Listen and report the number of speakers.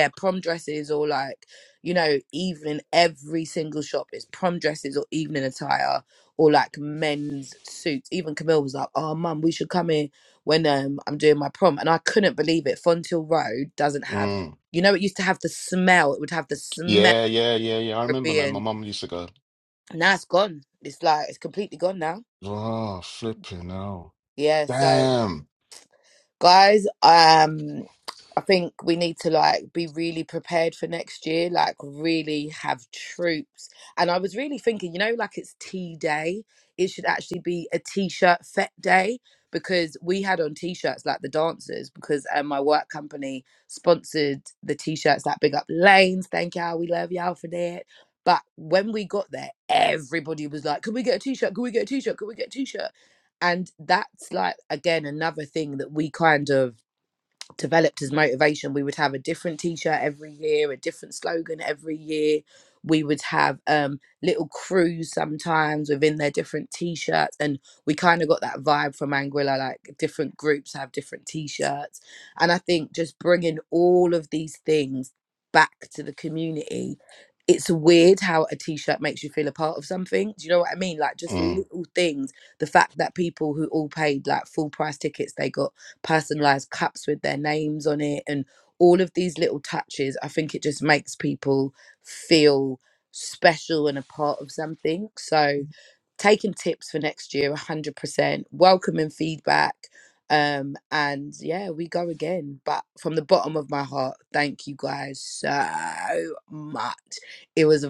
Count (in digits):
2